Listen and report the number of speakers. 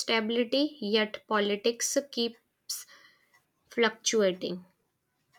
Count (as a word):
one